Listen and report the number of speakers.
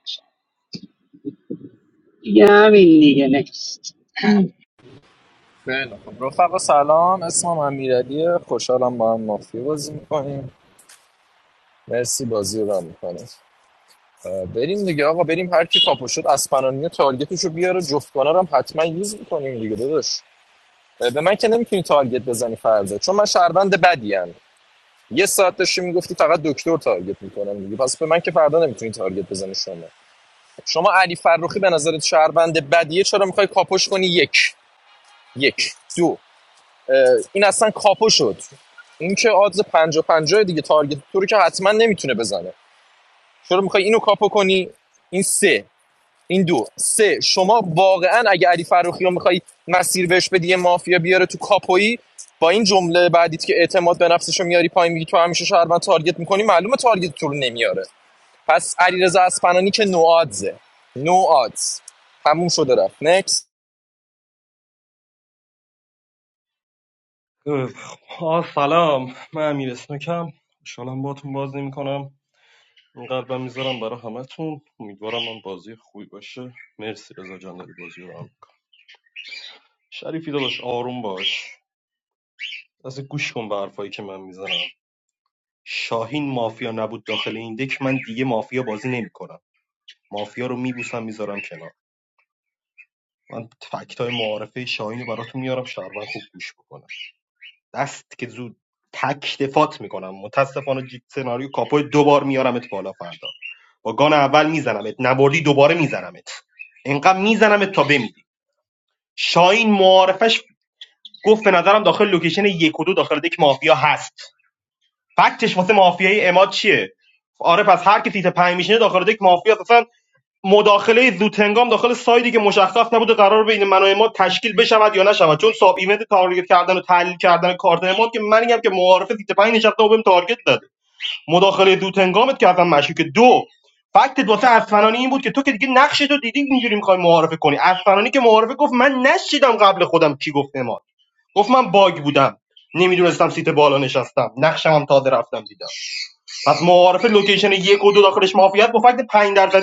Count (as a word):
three